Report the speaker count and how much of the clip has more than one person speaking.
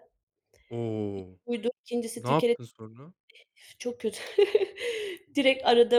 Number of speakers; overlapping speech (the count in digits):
2, no overlap